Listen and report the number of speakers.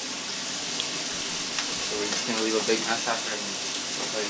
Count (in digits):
1